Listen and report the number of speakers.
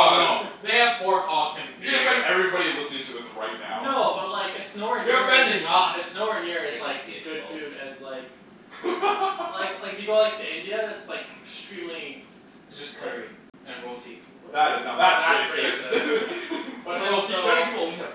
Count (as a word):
four